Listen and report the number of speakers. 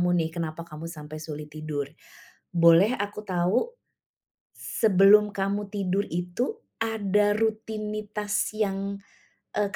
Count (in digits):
1